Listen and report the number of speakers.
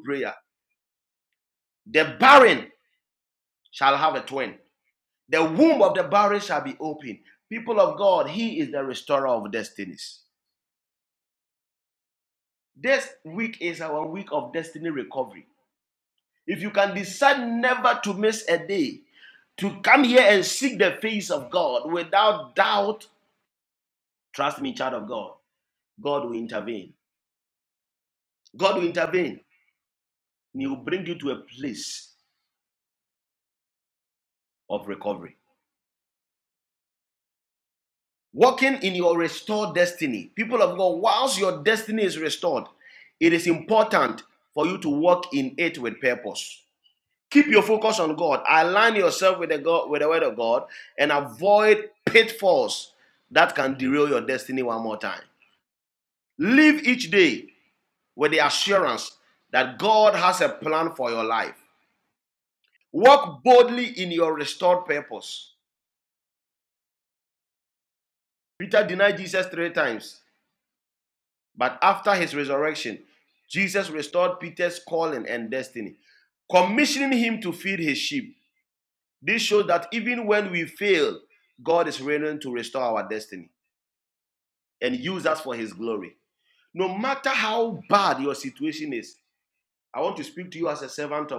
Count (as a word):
one